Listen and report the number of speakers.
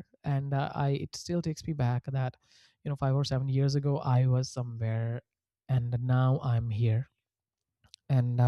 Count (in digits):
1